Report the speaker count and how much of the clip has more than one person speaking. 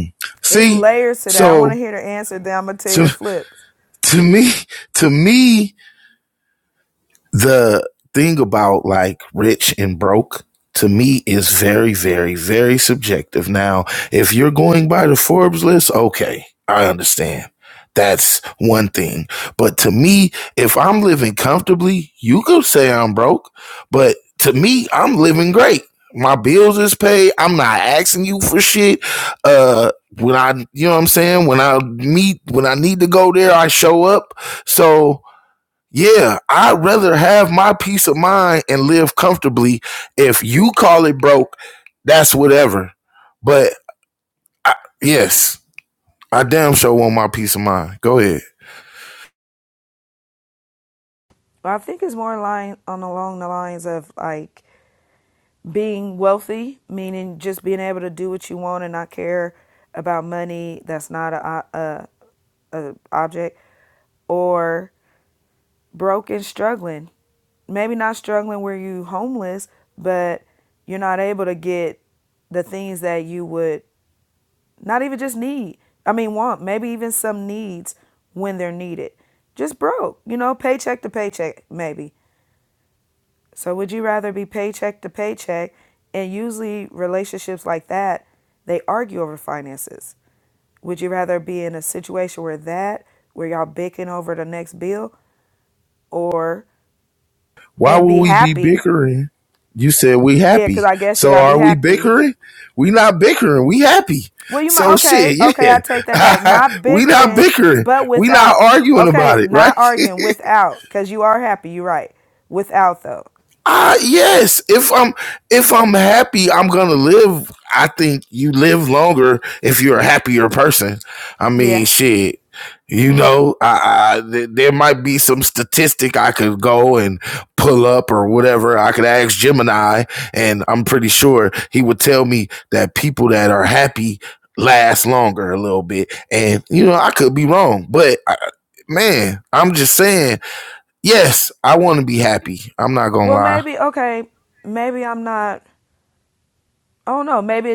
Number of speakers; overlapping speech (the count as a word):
two, about 5%